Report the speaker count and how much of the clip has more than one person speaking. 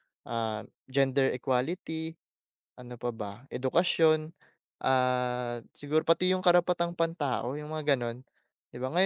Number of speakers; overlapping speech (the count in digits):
1, no overlap